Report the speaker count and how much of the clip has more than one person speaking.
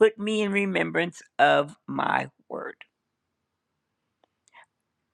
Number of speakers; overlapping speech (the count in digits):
1, no overlap